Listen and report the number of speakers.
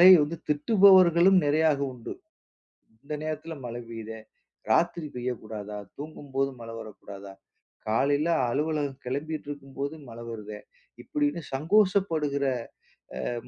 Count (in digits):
1